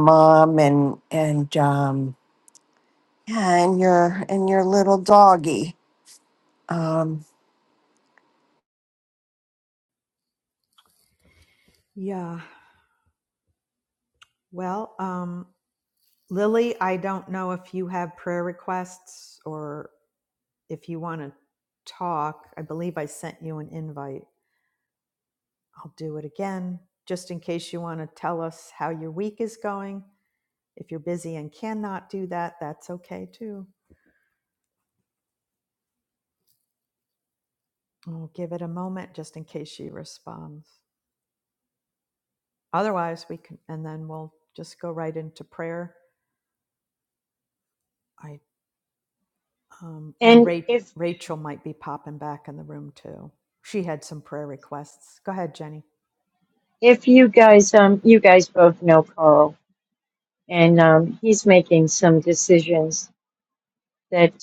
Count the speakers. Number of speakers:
3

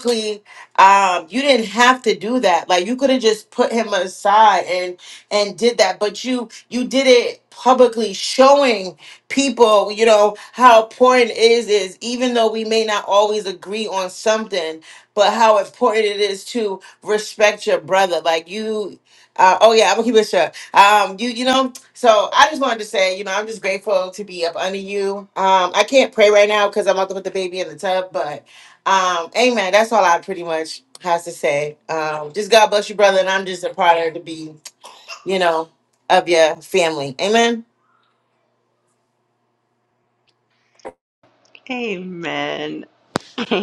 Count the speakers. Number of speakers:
2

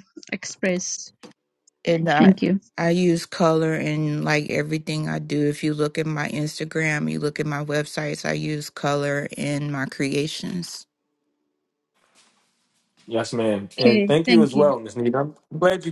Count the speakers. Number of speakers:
3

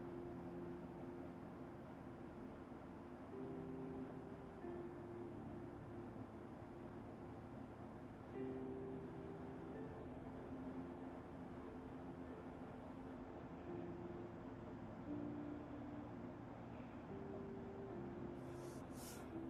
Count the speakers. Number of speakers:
0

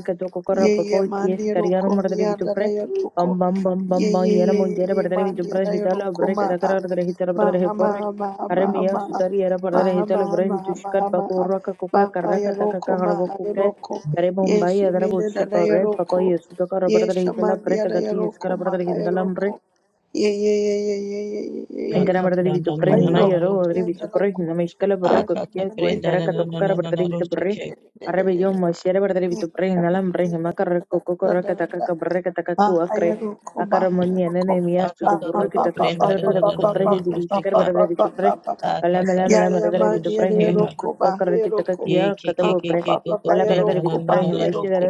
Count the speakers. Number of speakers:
3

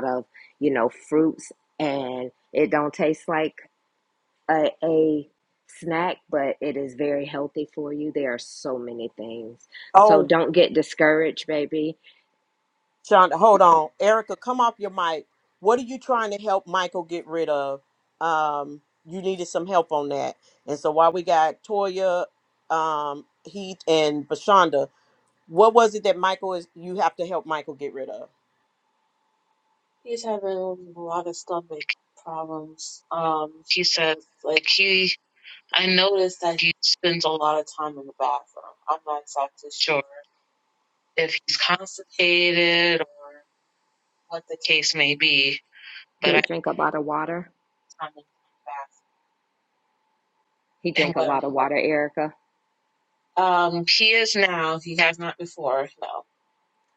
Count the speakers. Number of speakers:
3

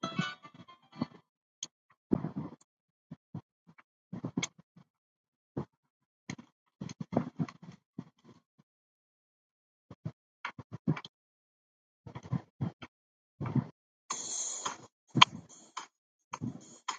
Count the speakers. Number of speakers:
0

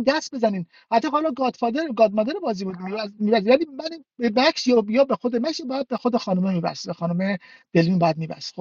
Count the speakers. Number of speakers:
1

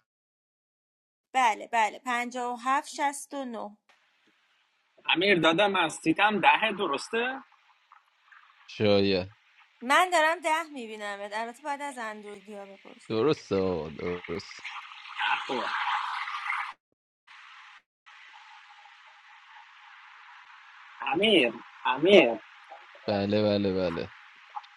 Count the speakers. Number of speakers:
3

